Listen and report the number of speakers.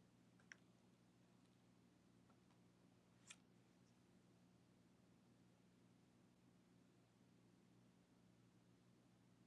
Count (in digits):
0